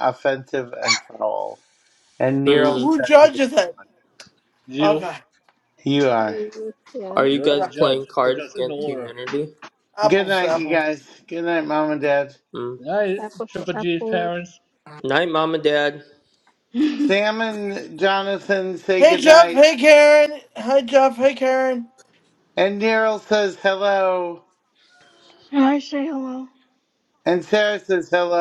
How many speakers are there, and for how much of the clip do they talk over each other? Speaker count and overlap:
6, about 21%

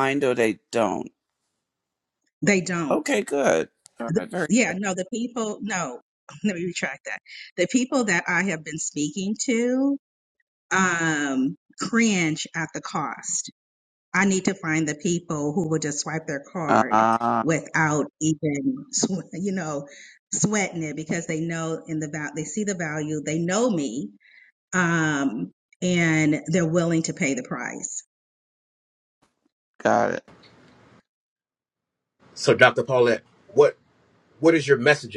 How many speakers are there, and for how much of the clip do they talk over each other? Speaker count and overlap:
3, about 3%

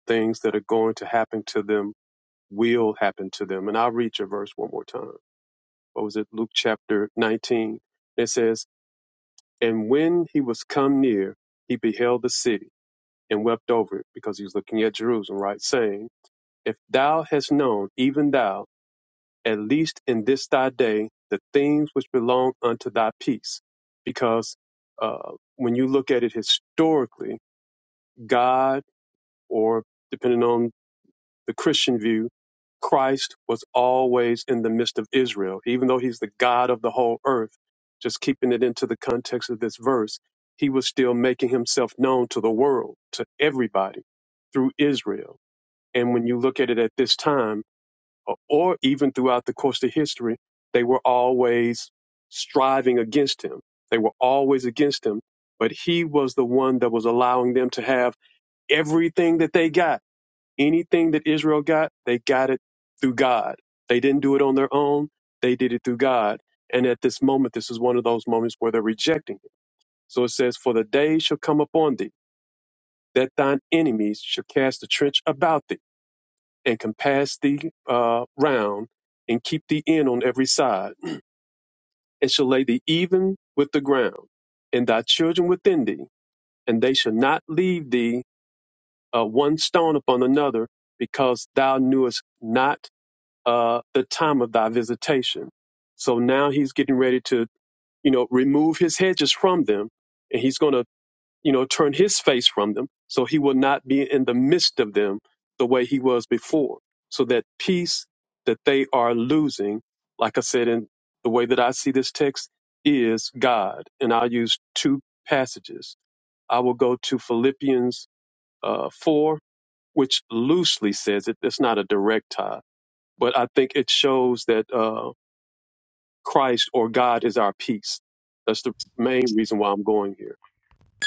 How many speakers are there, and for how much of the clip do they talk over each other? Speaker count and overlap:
1, no overlap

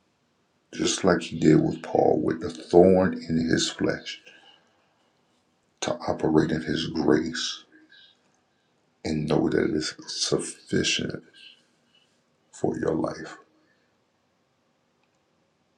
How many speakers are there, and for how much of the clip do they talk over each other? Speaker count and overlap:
1, no overlap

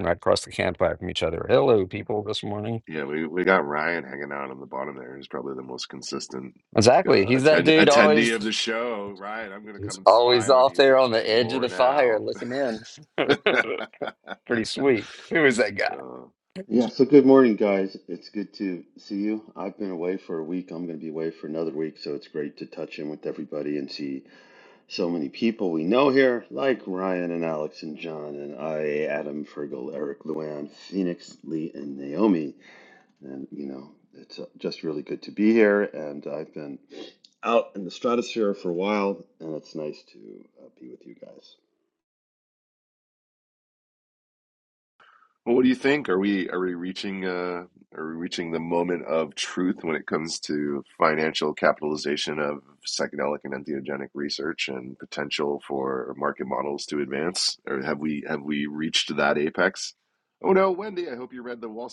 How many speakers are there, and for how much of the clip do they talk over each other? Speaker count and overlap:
3, about 6%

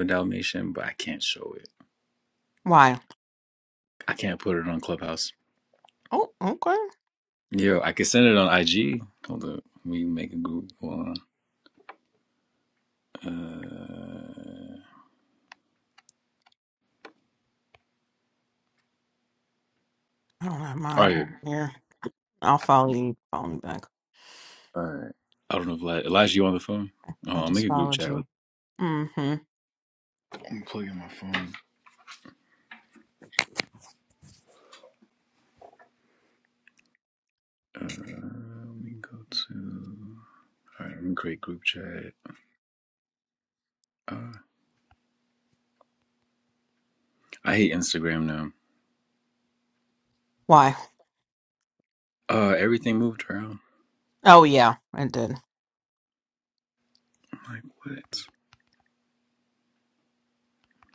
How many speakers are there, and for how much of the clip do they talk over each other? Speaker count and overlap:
2, about 2%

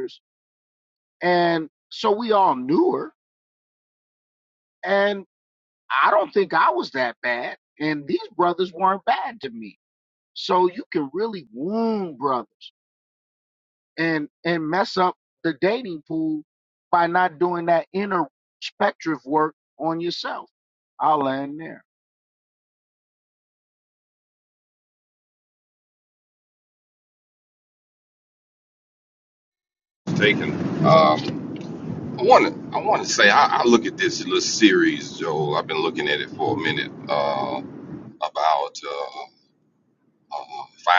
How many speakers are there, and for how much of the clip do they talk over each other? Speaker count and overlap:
2, no overlap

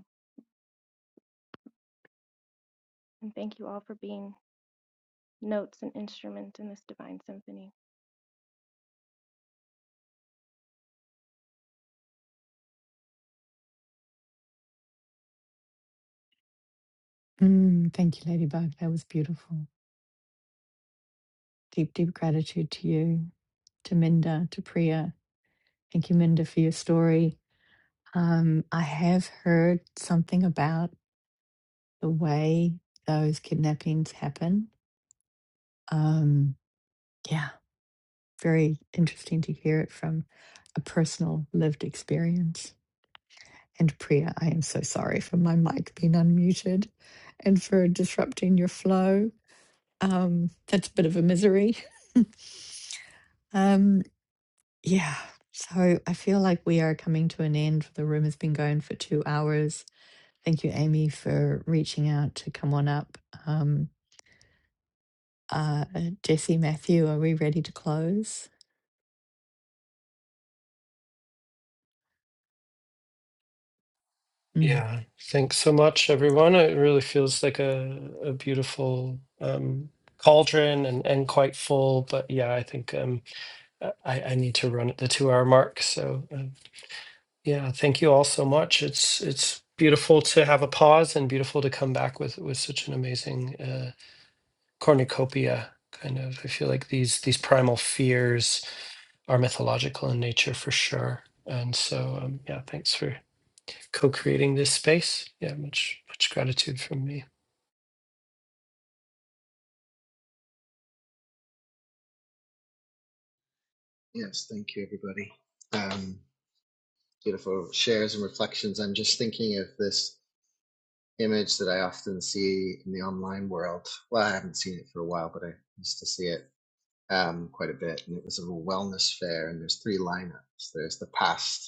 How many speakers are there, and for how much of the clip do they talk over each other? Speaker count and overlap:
4, under 1%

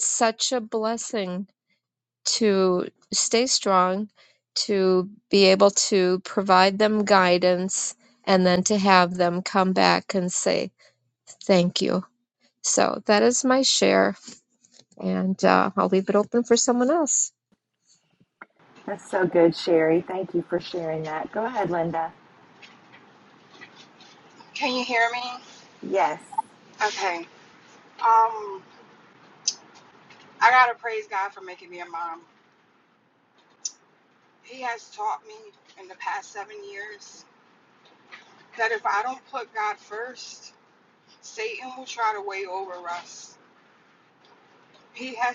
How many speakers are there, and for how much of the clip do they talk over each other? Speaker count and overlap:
3, no overlap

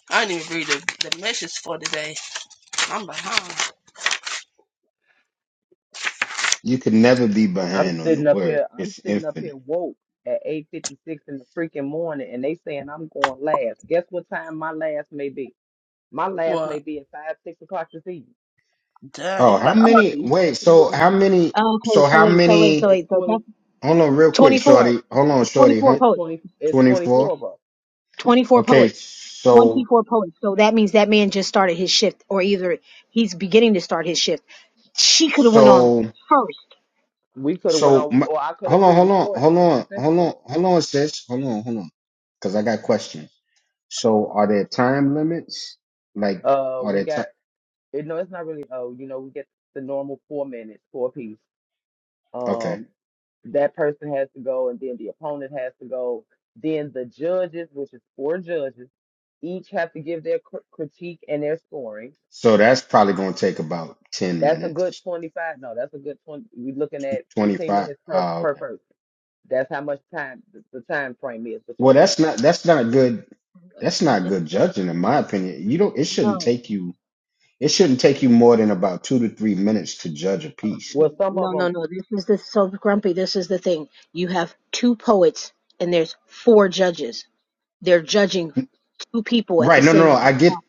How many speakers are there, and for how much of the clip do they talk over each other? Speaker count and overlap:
4, about 17%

